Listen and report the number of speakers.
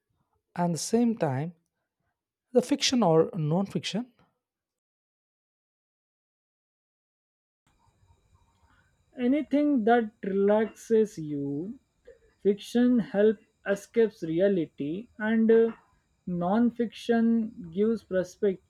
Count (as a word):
two